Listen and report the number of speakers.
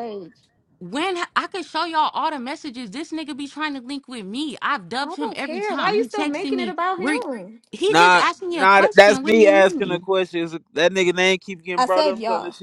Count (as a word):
three